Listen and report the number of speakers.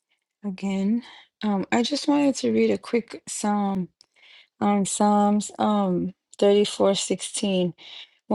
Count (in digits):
1